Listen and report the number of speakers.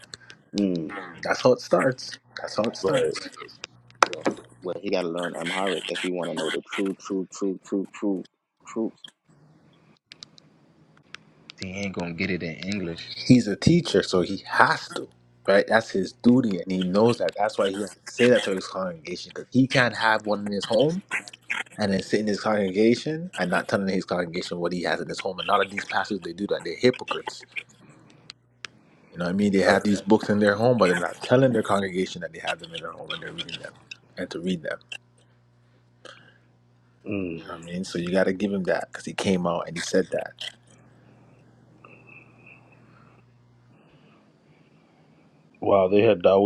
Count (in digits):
3